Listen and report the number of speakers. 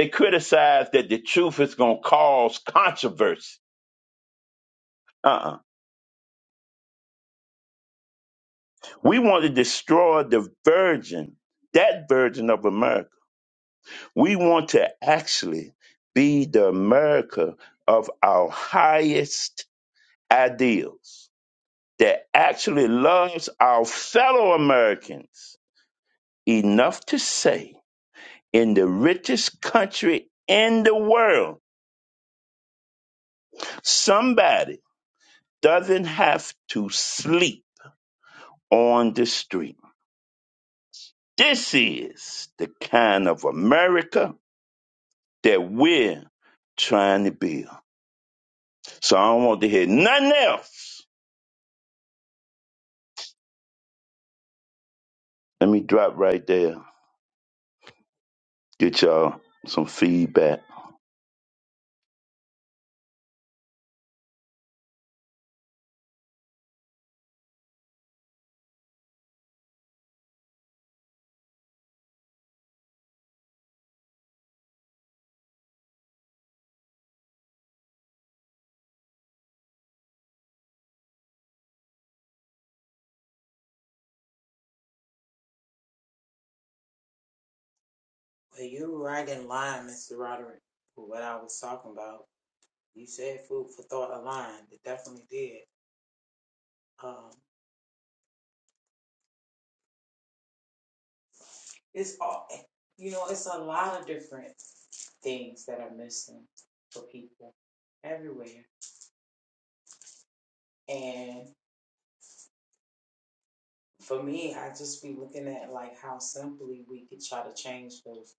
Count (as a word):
two